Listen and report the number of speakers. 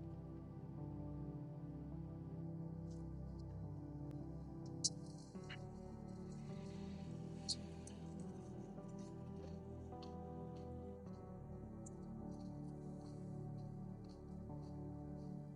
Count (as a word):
zero